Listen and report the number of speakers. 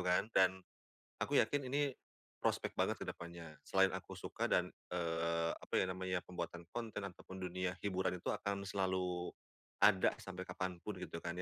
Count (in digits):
1